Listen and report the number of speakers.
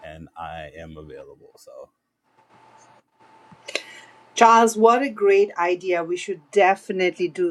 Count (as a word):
two